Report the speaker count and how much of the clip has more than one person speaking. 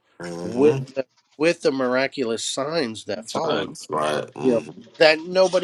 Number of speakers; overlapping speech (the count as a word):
two, about 15%